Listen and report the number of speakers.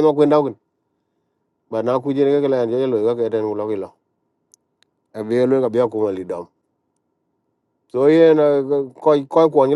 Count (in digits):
1